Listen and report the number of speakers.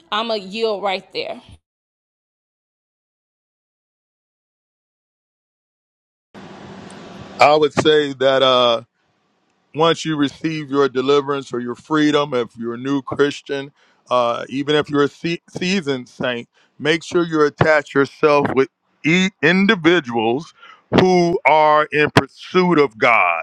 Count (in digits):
2